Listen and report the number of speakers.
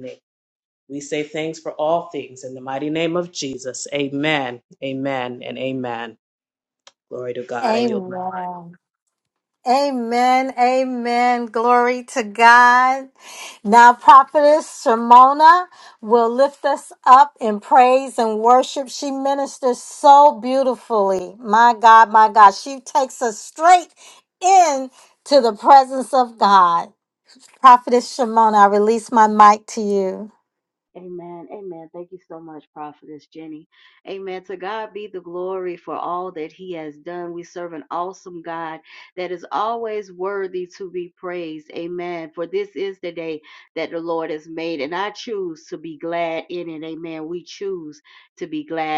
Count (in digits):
3